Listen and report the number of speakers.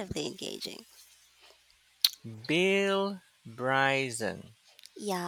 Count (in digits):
2